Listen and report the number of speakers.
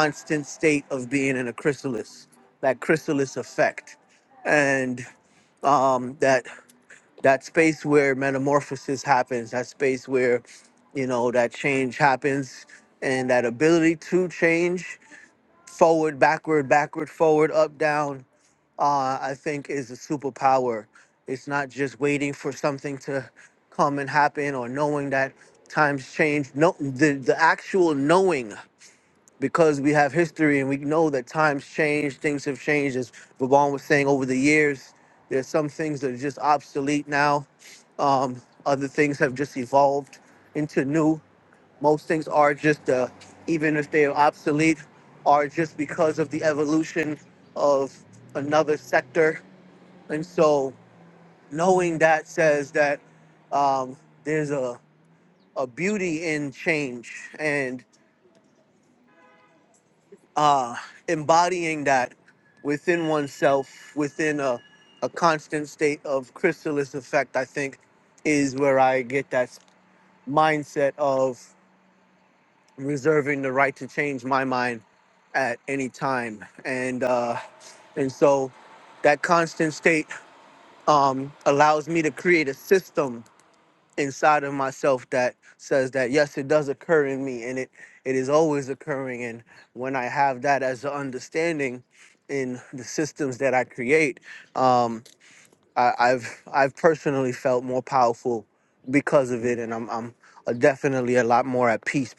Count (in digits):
1